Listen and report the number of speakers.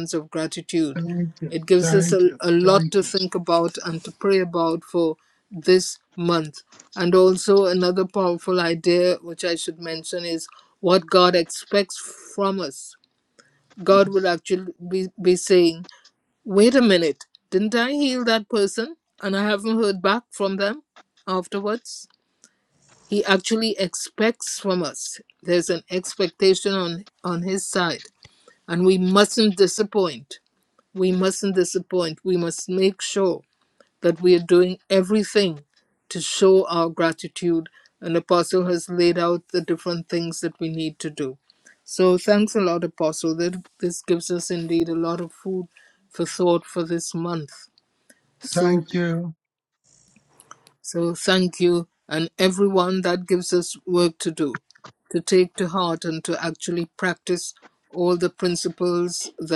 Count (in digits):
2